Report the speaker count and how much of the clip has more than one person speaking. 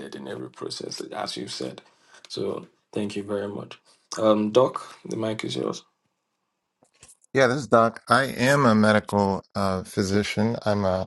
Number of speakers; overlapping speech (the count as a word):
two, no overlap